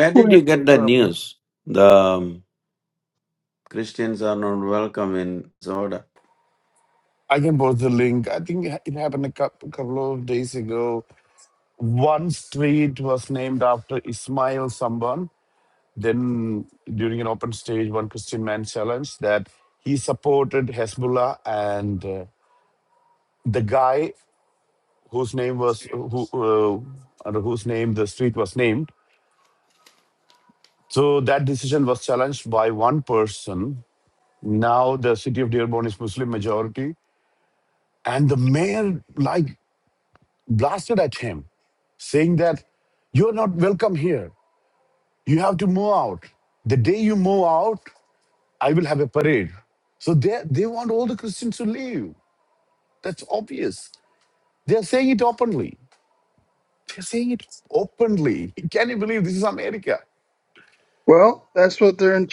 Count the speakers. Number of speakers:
three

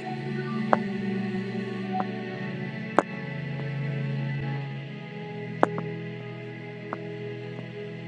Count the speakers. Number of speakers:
zero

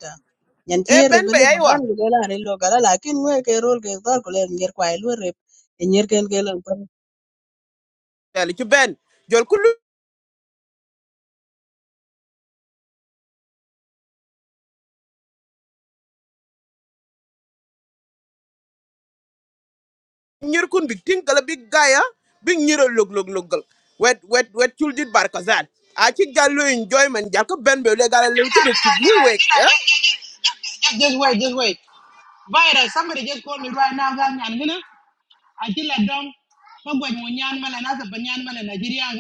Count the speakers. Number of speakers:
three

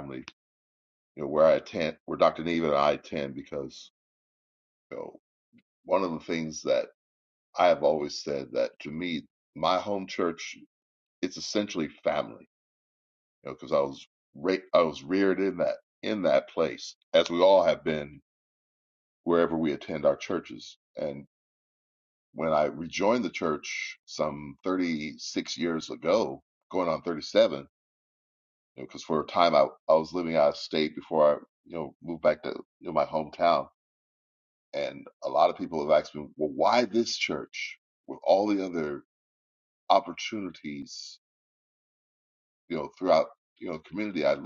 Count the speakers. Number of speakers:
one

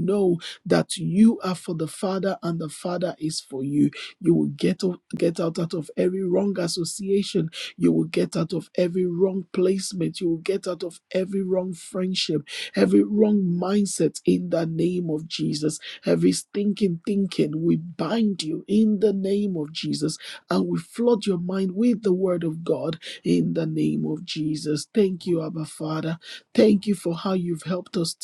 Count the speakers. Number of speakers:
one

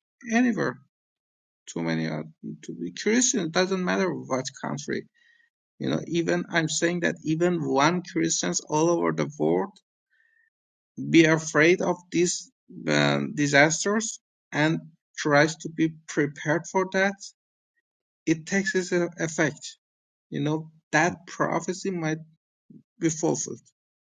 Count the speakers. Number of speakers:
one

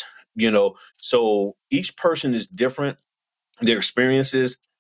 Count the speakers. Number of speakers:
one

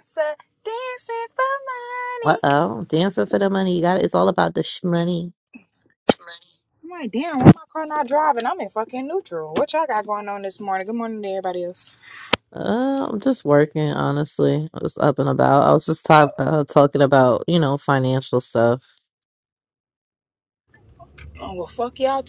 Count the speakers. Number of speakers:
two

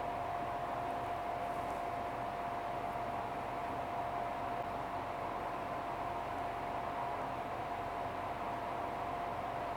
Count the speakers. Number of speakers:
zero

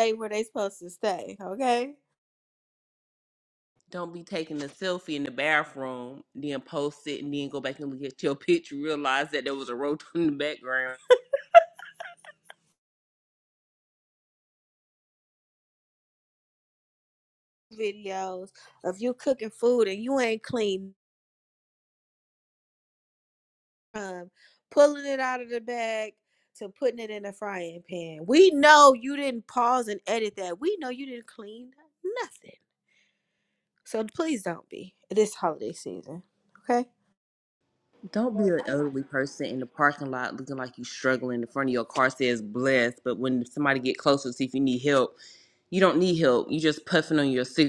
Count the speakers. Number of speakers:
two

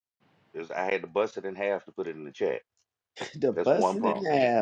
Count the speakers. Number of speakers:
two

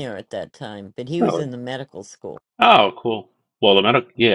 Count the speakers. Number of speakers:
two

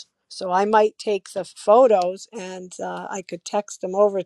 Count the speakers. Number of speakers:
one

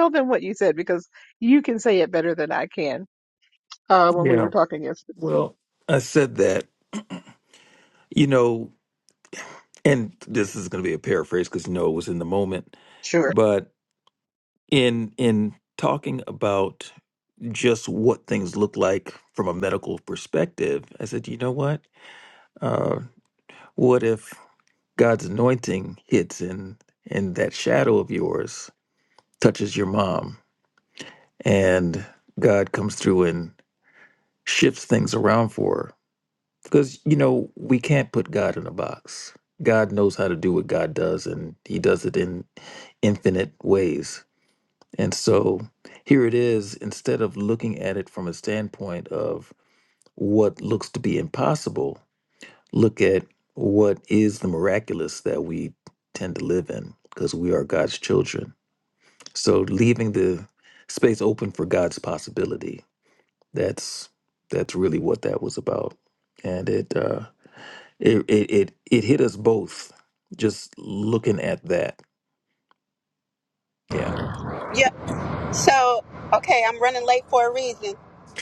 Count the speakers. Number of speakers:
three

